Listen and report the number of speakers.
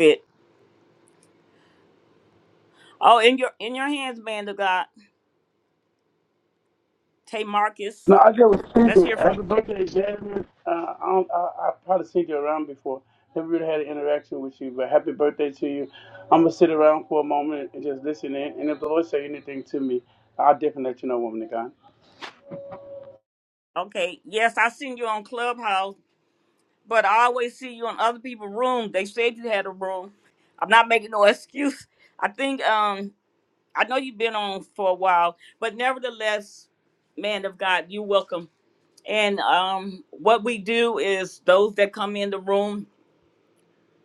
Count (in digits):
2